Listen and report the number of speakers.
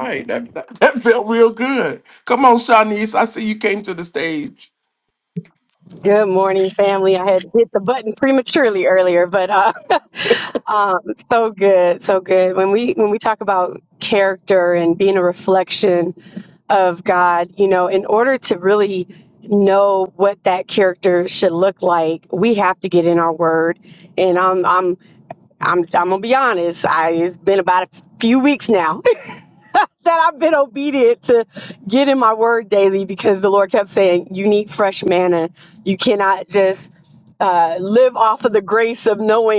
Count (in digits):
2